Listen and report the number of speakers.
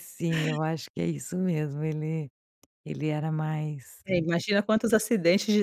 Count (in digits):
2